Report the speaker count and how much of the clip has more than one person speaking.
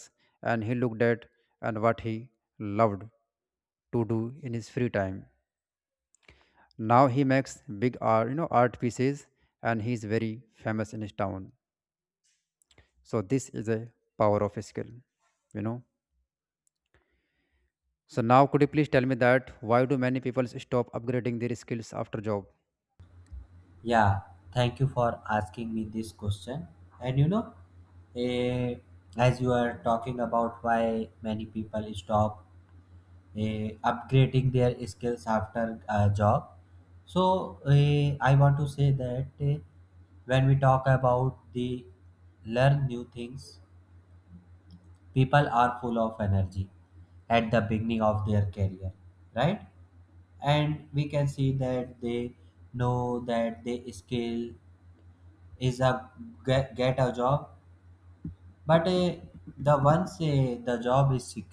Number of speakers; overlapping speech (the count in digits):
2, no overlap